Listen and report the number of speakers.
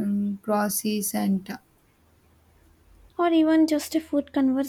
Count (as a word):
two